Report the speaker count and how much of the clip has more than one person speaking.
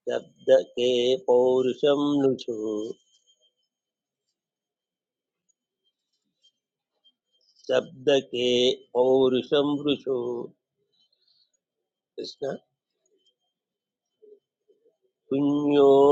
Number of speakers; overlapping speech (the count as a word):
one, no overlap